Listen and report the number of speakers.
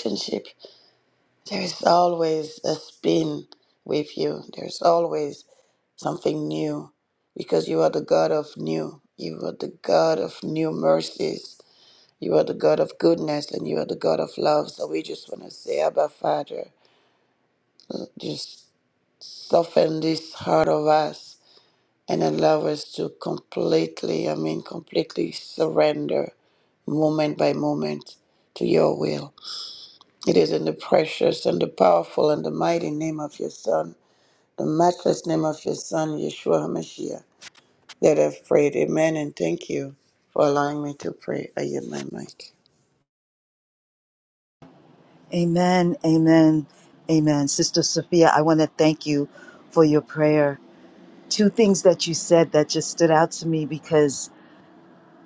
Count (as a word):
two